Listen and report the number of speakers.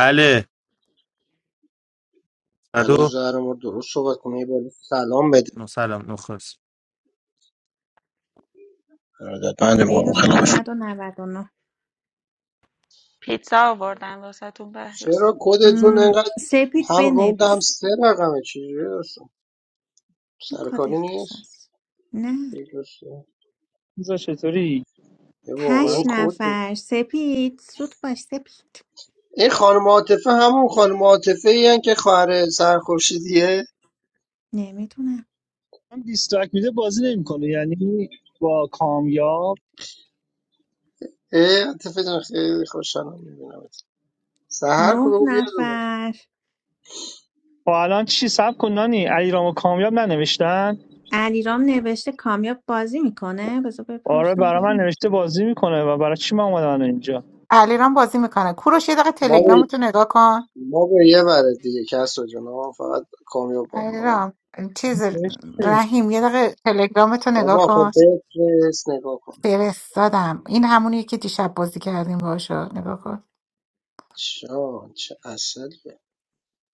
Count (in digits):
6